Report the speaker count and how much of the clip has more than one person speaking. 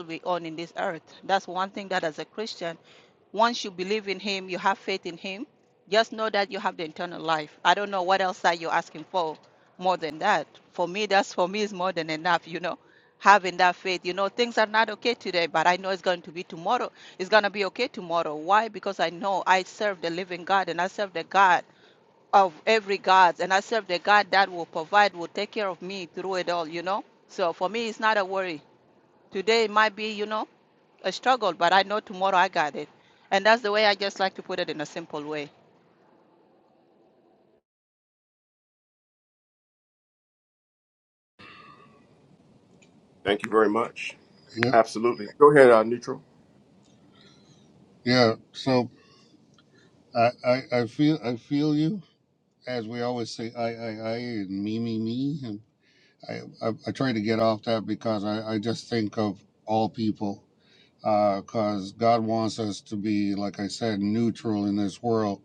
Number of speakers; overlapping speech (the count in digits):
3, under 1%